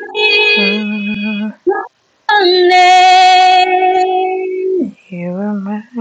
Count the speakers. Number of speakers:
2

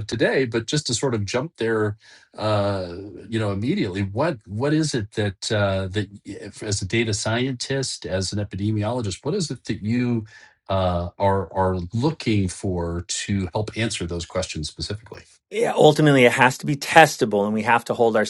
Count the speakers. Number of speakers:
2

